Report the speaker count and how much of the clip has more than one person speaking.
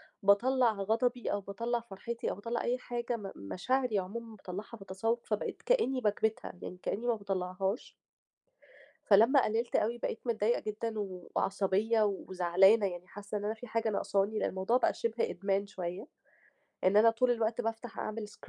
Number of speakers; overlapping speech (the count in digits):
1, no overlap